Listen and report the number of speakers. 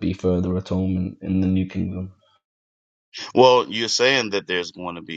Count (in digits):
2